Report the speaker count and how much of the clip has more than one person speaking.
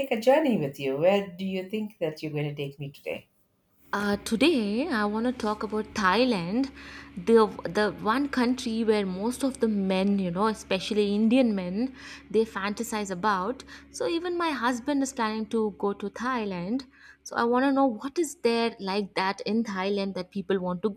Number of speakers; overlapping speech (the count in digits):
2, no overlap